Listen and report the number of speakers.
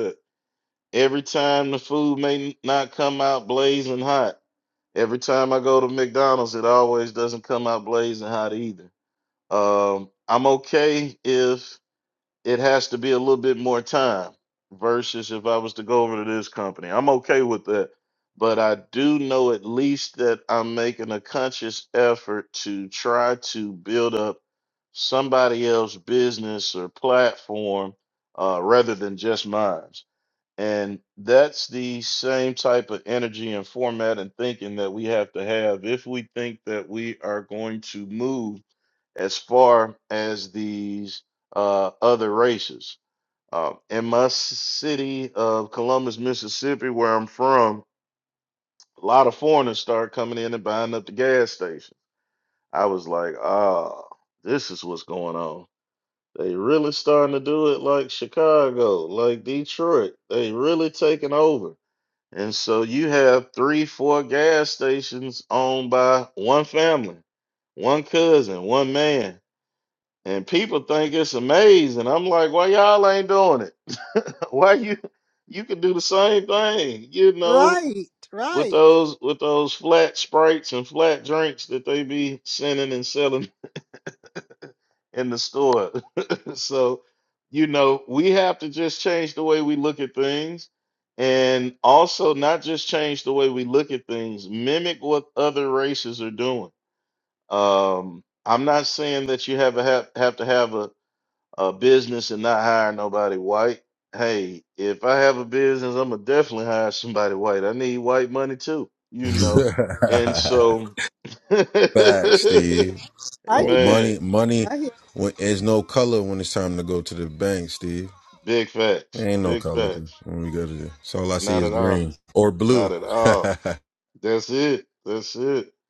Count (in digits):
3